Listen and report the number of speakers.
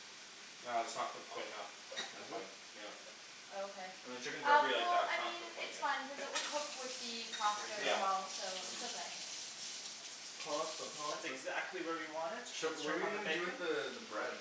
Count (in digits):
4